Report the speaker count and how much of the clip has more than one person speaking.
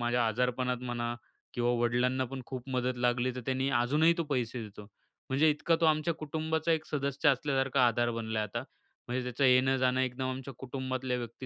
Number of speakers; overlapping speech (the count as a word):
one, no overlap